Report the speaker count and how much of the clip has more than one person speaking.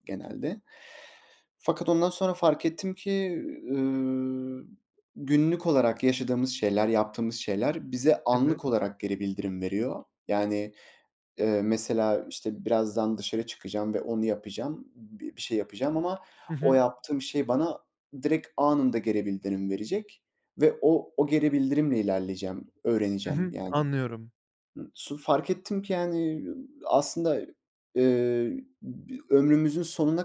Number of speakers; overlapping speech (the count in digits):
2, about 3%